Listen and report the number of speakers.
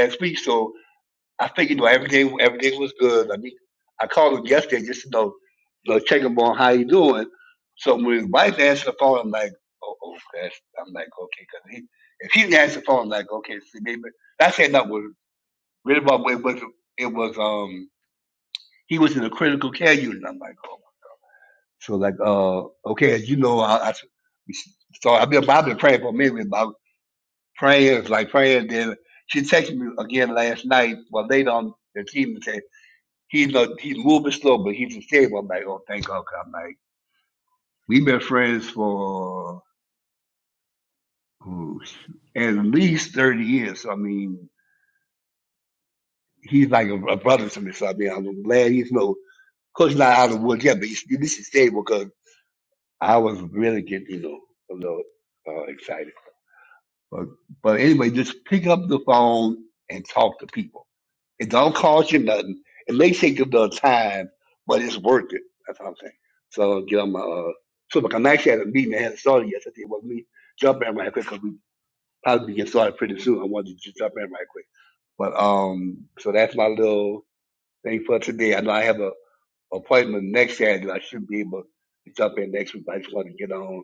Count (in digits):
1